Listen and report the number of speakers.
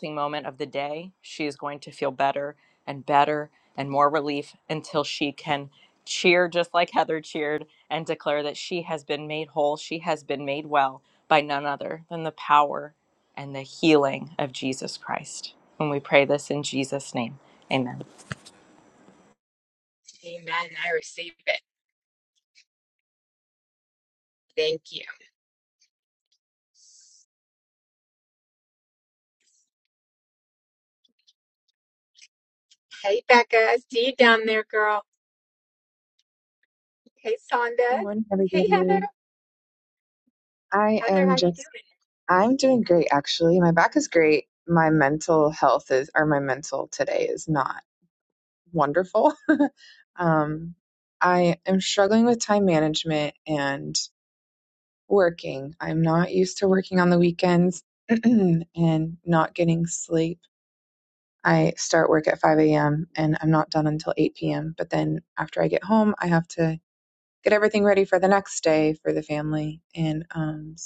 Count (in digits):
3